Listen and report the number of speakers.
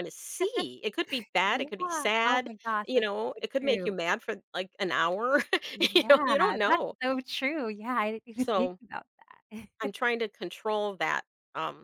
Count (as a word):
two